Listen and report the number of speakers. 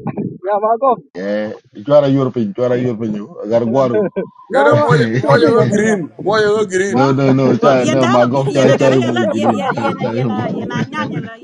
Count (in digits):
4